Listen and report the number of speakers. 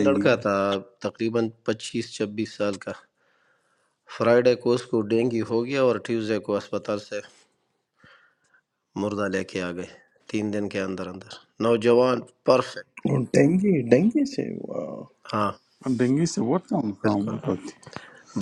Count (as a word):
three